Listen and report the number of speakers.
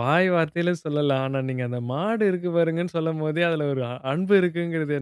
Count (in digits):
1